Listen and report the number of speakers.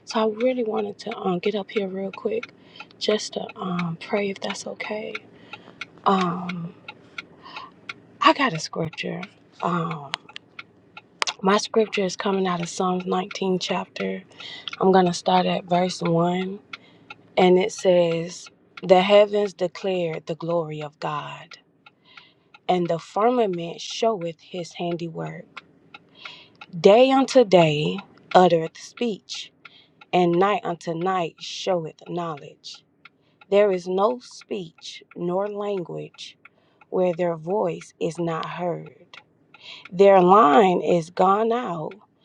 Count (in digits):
1